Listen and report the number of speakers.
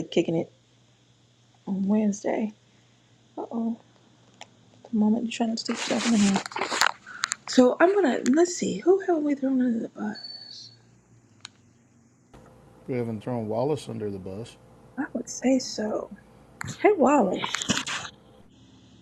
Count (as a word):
two